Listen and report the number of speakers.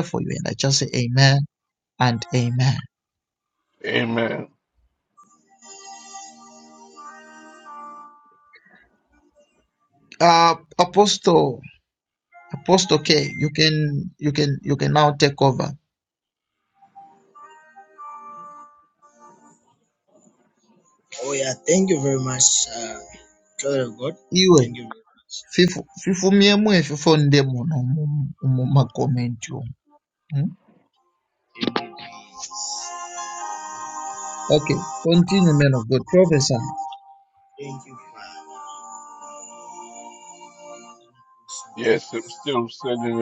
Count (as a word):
three